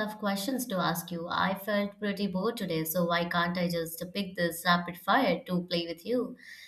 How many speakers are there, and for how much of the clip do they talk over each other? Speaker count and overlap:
one, no overlap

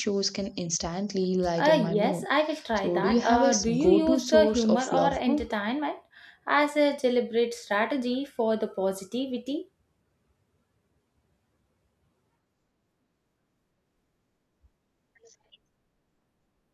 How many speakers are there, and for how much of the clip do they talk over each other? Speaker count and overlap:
two, about 20%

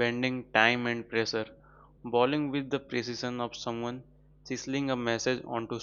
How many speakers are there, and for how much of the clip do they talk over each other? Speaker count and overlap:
one, no overlap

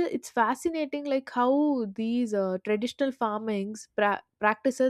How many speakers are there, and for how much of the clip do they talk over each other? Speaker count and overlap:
one, no overlap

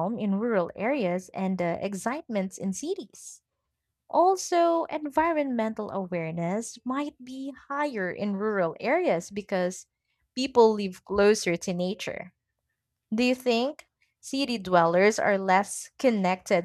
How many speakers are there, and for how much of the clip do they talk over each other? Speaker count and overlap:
one, no overlap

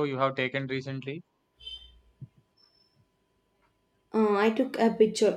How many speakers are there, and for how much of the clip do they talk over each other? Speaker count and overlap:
two, no overlap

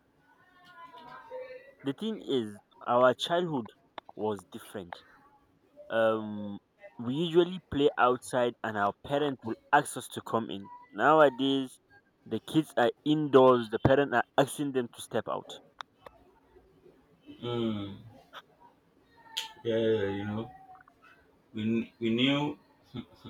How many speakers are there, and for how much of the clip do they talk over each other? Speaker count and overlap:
two, no overlap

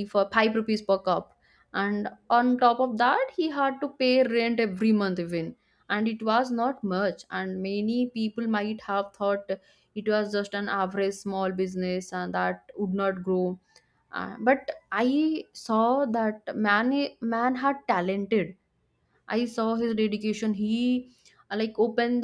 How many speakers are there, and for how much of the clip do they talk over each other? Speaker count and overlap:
one, no overlap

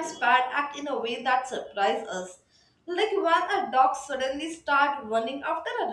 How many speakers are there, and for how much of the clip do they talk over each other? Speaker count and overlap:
one, no overlap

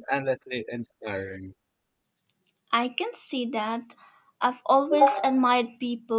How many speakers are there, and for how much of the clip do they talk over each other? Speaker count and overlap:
two, no overlap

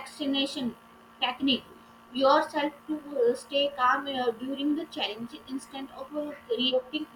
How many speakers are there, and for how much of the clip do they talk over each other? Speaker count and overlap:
one, no overlap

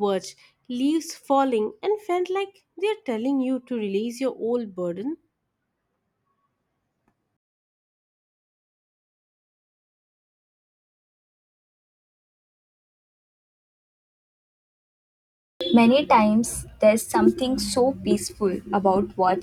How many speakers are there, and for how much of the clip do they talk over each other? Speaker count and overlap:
two, no overlap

